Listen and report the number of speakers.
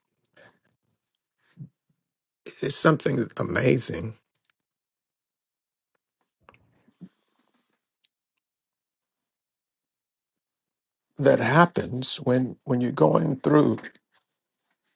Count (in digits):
1